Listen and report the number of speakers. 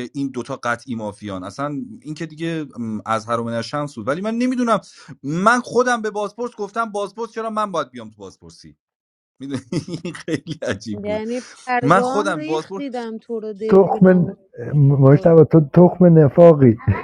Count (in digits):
3